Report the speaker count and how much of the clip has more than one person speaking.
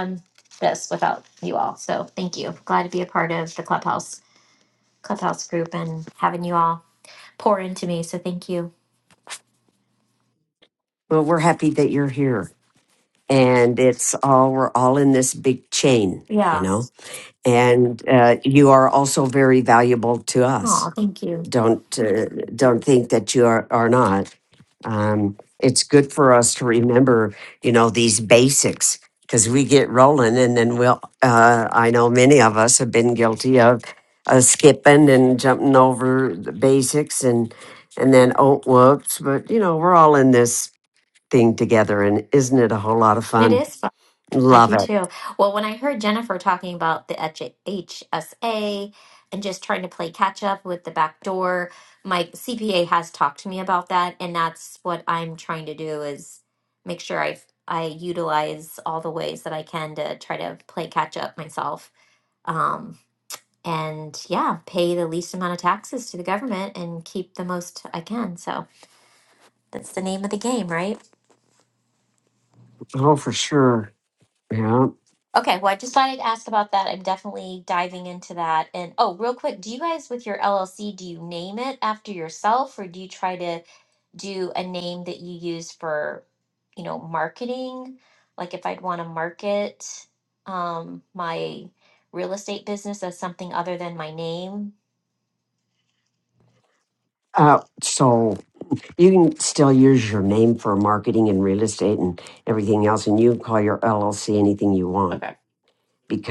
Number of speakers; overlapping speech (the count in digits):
2, about 1%